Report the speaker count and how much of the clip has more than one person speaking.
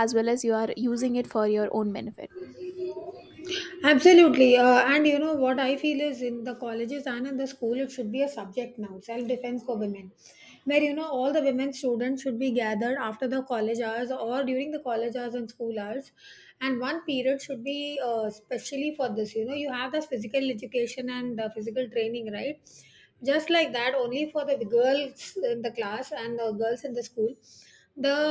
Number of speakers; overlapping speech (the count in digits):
2, no overlap